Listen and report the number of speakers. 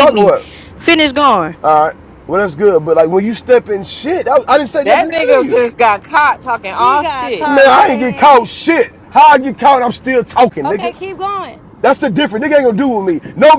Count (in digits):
4